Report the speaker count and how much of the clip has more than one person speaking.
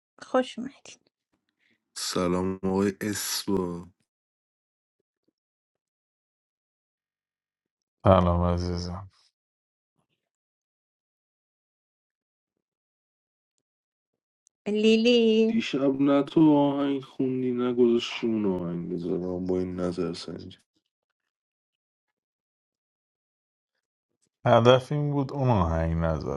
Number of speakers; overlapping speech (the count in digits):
3, under 1%